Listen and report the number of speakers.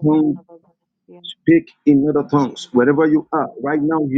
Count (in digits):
1